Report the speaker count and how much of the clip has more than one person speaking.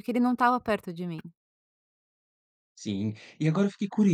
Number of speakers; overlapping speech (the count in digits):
2, no overlap